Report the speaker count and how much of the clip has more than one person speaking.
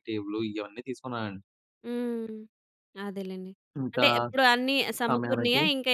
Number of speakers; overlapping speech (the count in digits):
2, about 13%